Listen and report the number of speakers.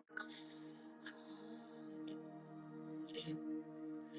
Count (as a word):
zero